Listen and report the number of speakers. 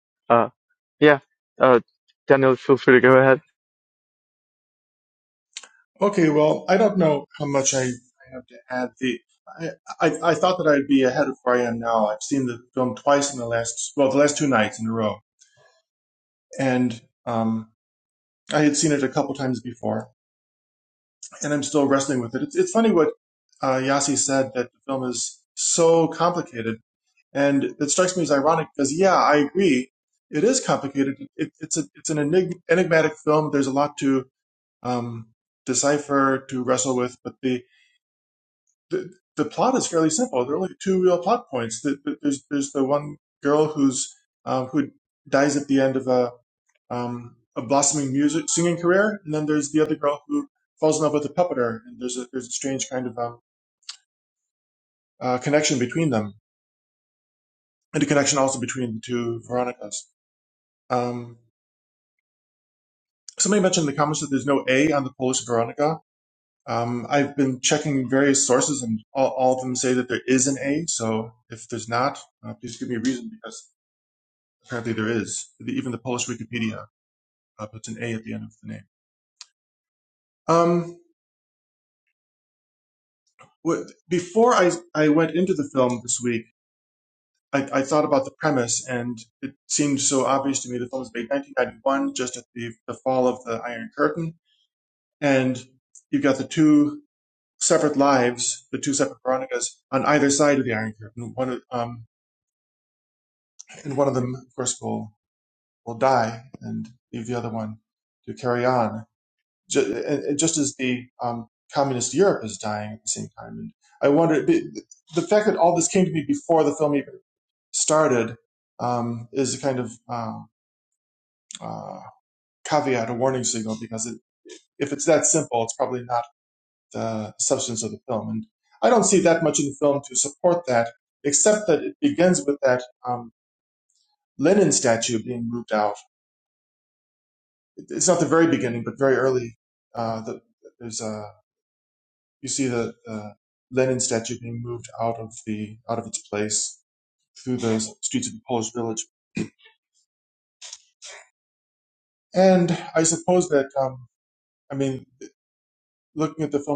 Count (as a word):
two